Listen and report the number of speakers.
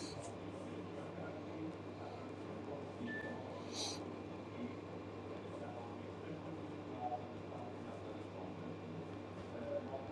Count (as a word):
zero